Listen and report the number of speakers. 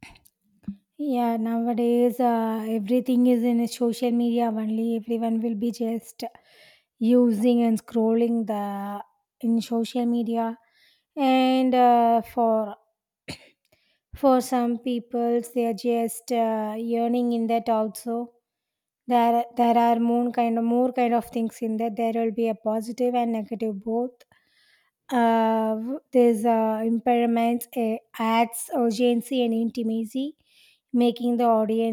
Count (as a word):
one